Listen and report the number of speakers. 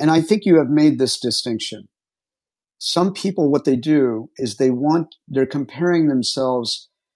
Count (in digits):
1